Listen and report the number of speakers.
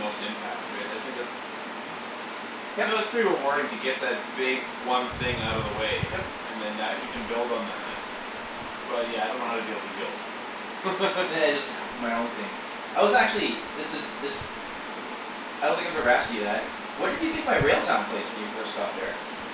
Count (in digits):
2